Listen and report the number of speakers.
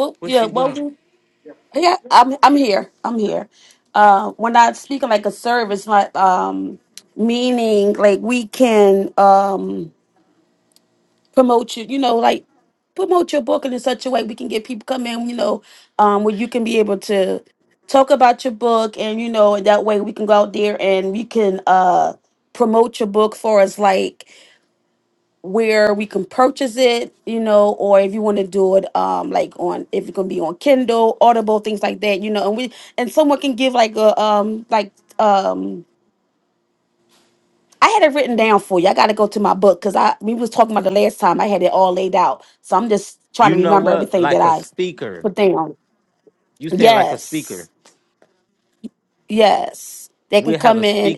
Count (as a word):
two